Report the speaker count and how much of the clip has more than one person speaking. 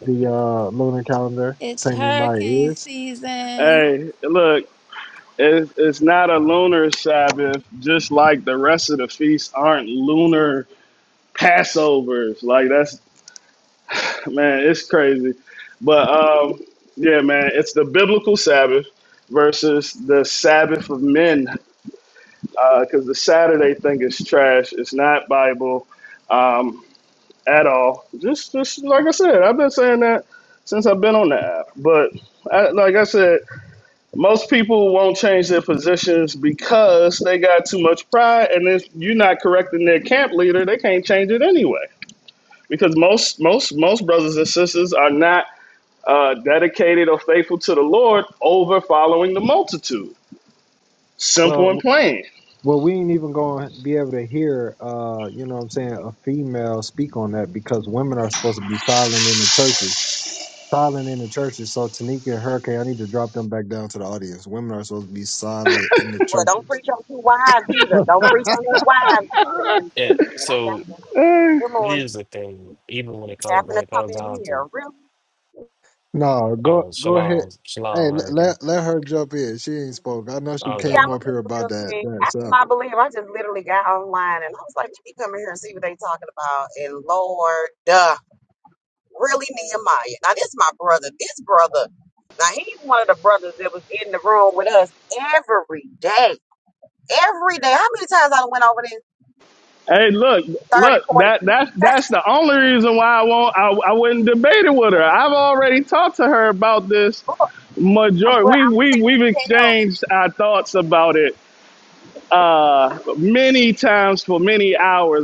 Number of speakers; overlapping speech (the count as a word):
five, about 9%